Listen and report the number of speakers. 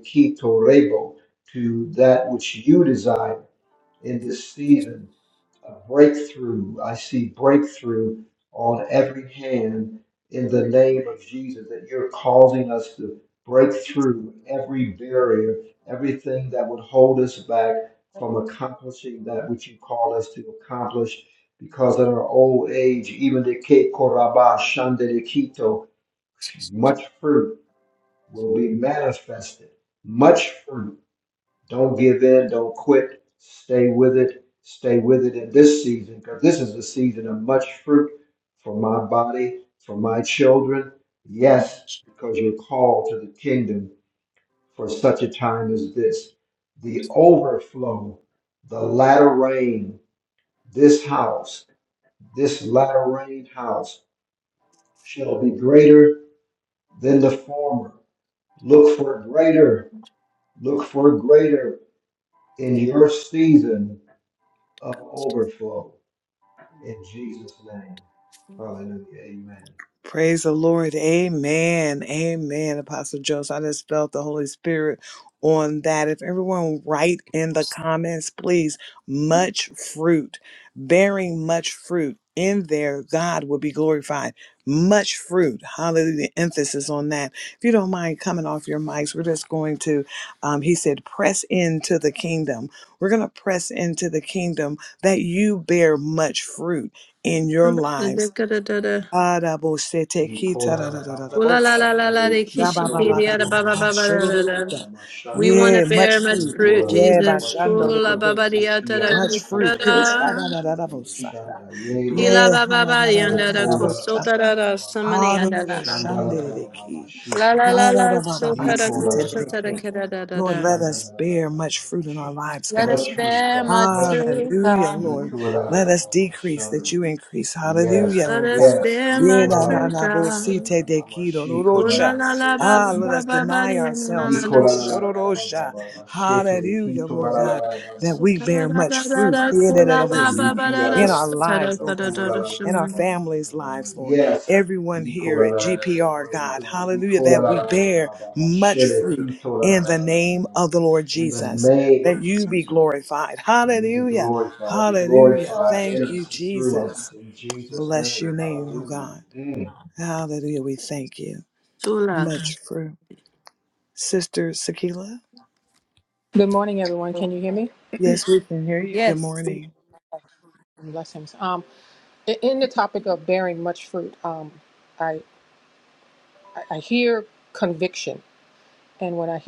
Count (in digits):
4